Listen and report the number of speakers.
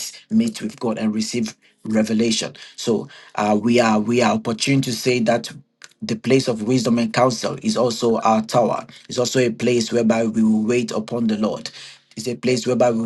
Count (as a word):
one